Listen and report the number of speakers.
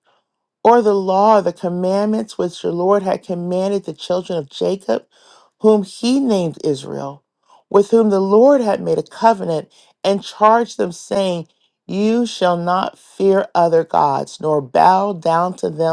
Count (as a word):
one